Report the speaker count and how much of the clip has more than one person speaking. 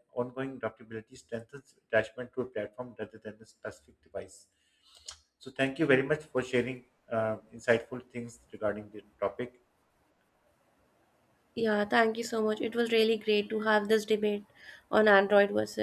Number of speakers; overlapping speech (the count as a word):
two, no overlap